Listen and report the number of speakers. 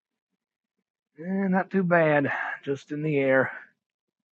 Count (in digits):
1